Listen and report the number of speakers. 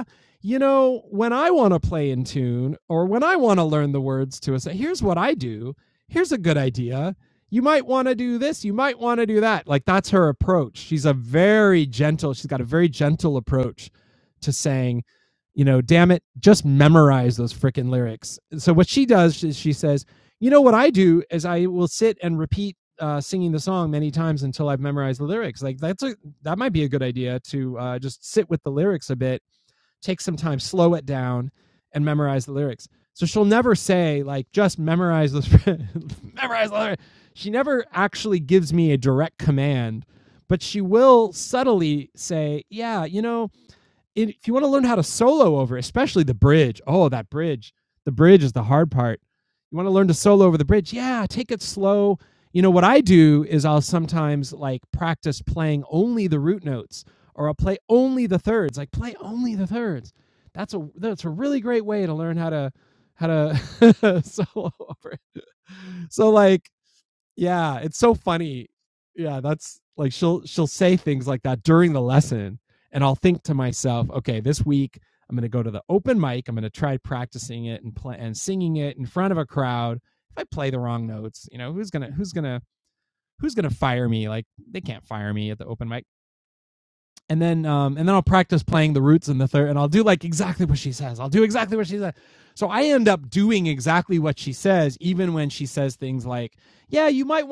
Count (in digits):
1